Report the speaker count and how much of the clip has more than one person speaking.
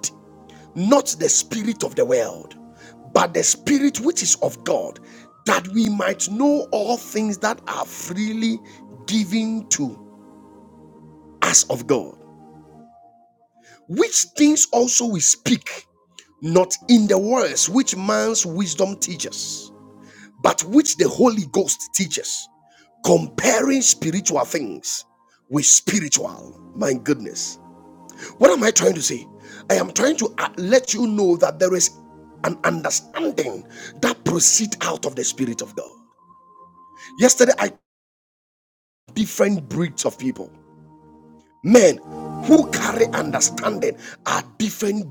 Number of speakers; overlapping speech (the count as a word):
one, no overlap